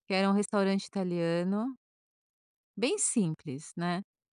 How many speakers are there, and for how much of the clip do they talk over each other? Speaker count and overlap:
one, no overlap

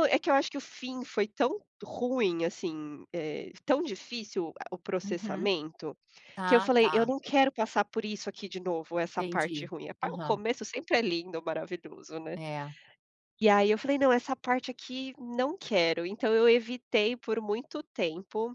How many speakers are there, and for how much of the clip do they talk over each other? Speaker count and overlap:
two, about 10%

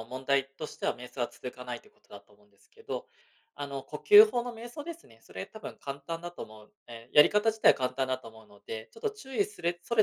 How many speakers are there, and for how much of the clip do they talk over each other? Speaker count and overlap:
one, no overlap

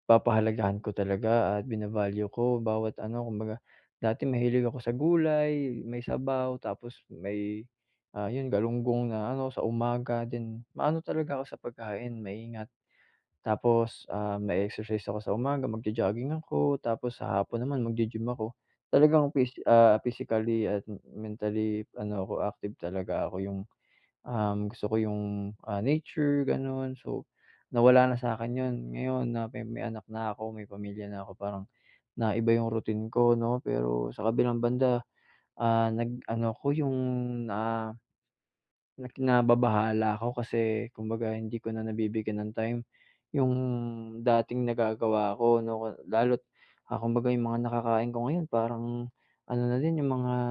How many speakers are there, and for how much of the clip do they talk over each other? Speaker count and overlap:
one, no overlap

